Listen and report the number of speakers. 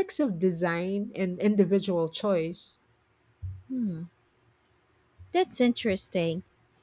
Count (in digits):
2